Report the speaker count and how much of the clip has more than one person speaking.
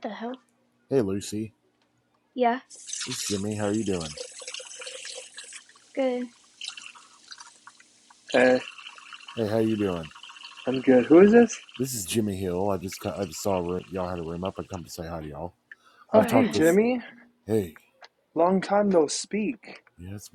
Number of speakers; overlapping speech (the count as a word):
three, about 3%